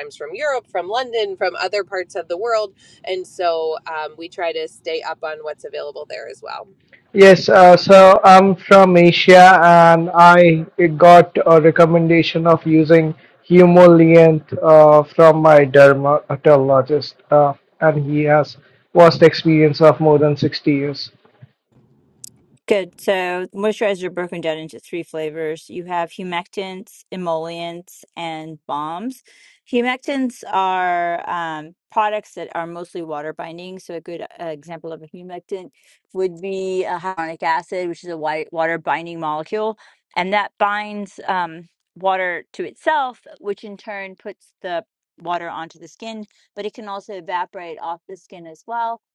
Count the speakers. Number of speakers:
three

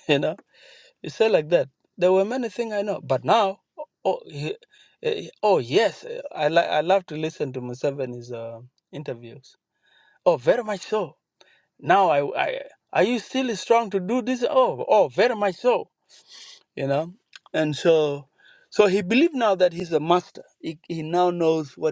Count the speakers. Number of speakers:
one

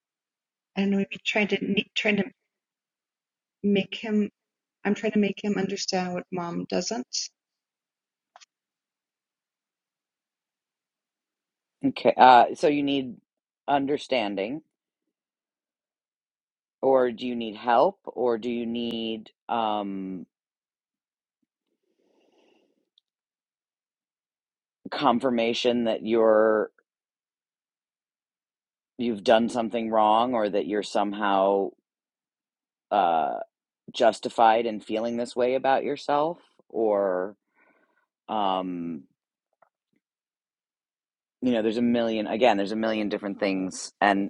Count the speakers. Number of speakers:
two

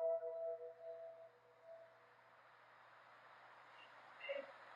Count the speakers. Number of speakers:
zero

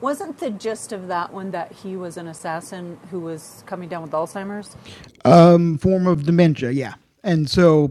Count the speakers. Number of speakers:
two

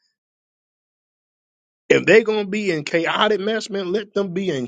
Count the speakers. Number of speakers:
one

